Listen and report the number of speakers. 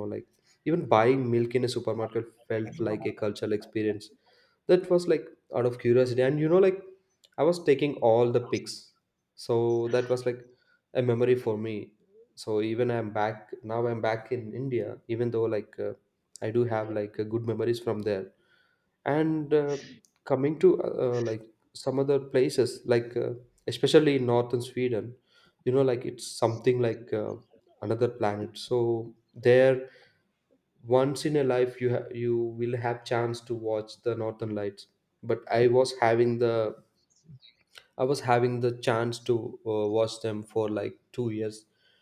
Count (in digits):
1